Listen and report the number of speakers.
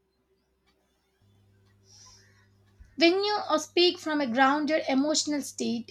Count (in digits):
1